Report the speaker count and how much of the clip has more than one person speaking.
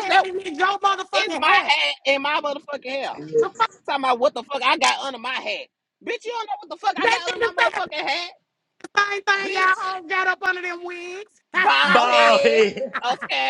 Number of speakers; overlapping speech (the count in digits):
3, about 23%